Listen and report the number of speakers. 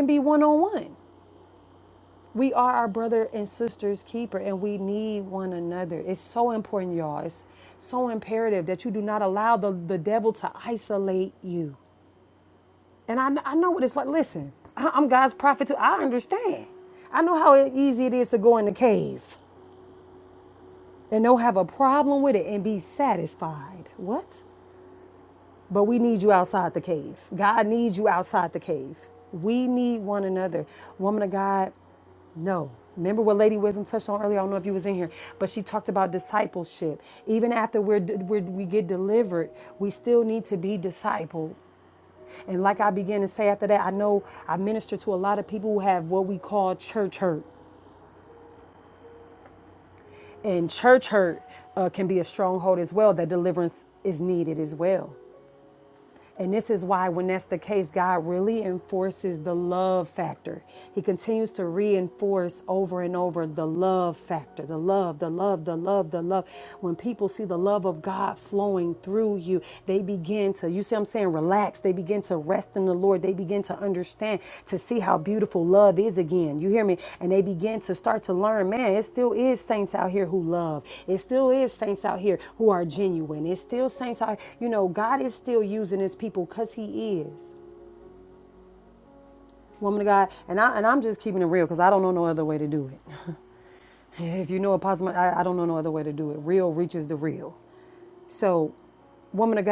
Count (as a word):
one